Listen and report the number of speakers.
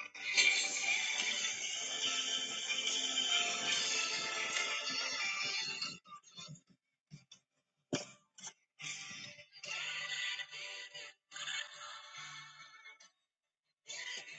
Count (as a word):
zero